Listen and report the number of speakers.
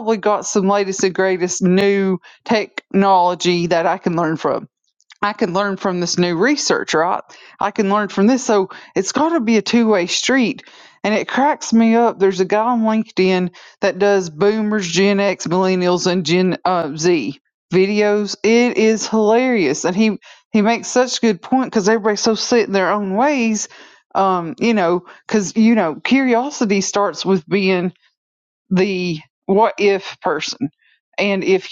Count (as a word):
one